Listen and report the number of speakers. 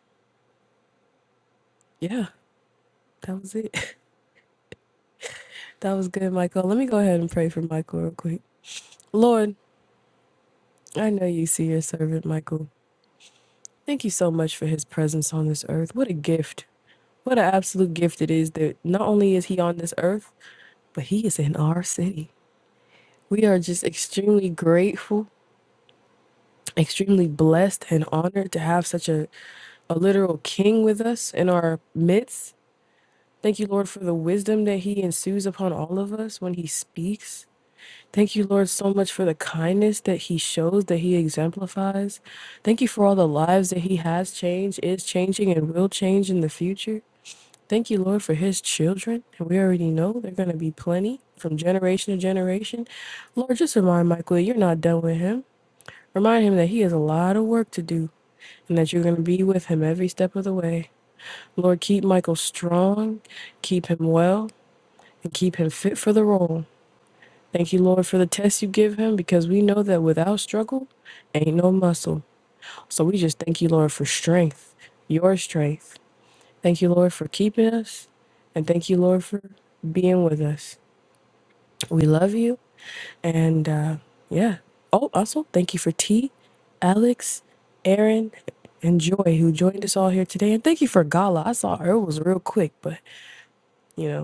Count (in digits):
1